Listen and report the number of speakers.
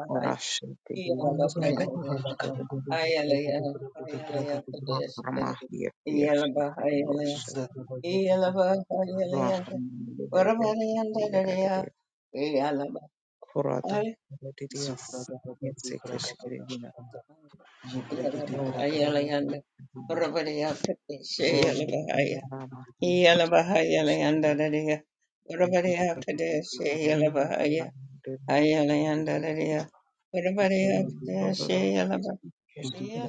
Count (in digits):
3